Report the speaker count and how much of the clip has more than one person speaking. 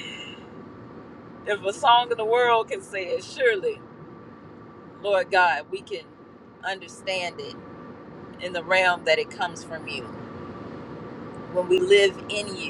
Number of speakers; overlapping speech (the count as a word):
one, no overlap